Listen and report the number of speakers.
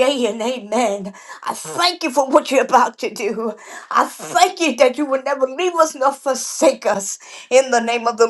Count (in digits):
1